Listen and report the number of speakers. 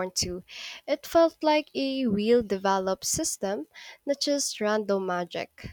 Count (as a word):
one